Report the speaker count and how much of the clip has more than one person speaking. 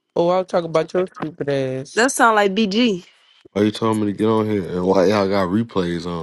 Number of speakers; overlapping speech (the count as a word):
three, no overlap